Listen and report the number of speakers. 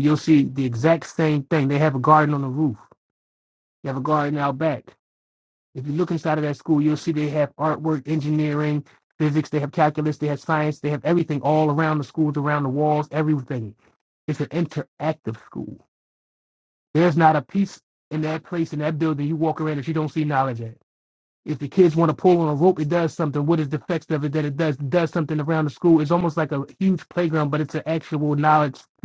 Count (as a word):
one